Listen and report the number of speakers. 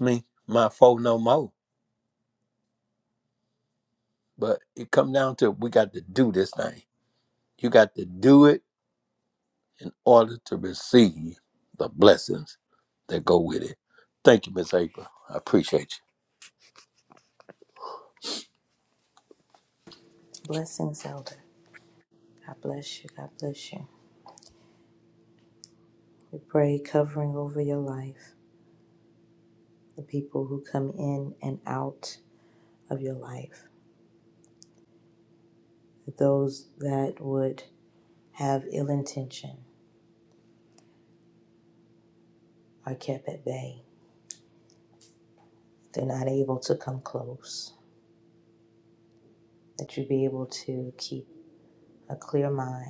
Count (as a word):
two